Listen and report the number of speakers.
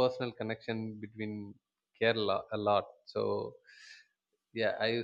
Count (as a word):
one